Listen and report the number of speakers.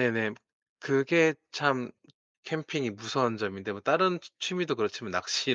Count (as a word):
one